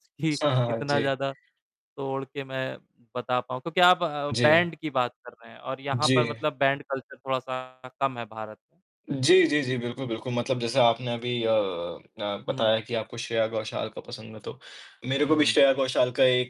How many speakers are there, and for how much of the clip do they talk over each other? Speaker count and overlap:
2, about 13%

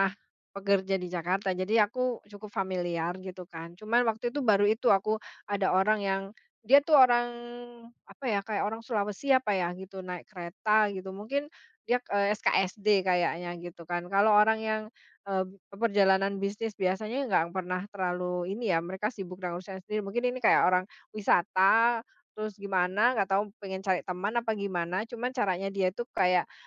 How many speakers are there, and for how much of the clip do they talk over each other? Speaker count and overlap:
1, no overlap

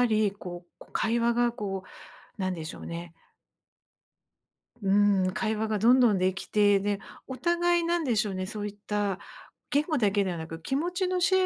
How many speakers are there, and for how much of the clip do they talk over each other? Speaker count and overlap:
1, no overlap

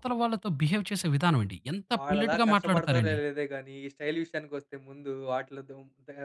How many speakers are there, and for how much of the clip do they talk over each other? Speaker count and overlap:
2, about 20%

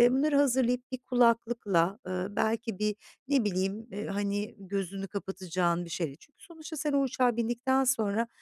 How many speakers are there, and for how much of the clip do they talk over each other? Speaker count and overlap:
1, no overlap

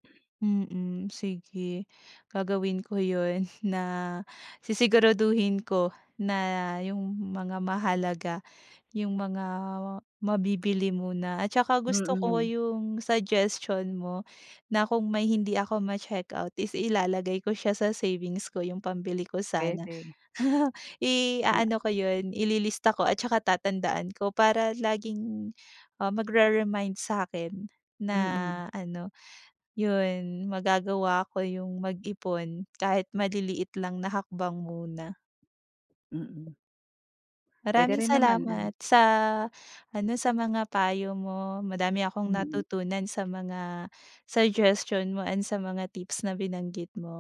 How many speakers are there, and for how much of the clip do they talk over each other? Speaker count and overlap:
2, about 5%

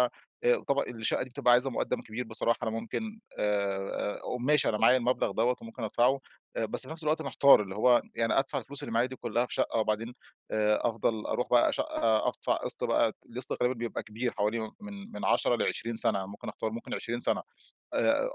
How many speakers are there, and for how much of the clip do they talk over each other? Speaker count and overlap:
1, no overlap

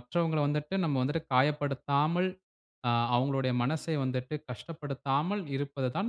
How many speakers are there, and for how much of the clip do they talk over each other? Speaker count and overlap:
1, no overlap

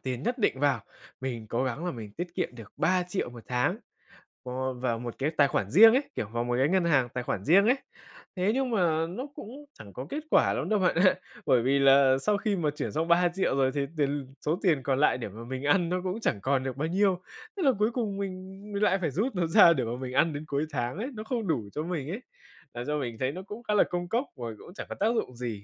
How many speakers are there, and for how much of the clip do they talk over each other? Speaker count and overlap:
1, no overlap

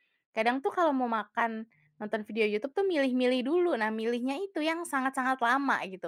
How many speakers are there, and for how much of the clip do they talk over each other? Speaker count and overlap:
1, no overlap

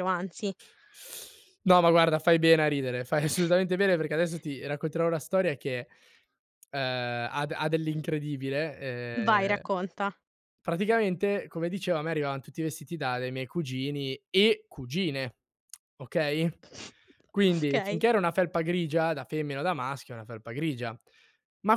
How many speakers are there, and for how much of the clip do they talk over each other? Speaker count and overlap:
2, about 4%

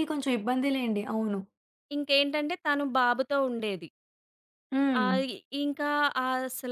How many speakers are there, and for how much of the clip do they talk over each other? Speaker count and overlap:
2, about 3%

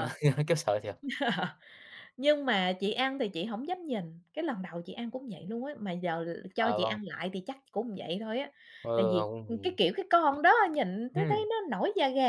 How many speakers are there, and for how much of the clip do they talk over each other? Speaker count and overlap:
2, about 12%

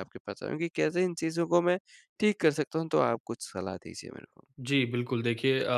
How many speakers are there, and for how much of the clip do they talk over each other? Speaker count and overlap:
2, no overlap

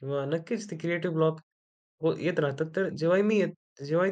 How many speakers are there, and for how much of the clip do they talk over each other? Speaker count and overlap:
1, no overlap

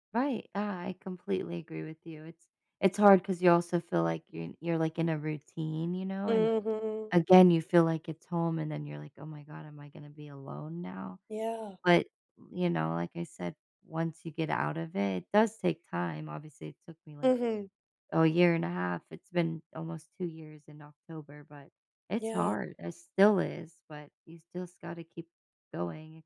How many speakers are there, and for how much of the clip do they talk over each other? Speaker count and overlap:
2, about 3%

